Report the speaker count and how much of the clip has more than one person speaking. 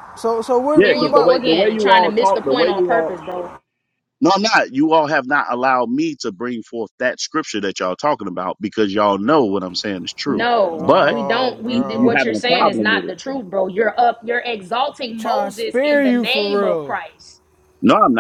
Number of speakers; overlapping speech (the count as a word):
three, about 37%